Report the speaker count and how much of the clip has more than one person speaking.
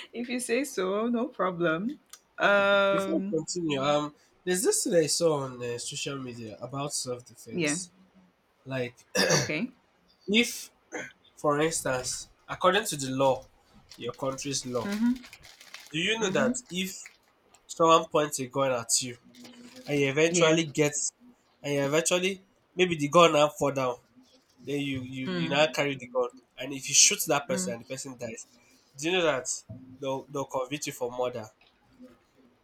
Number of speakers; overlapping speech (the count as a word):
two, about 6%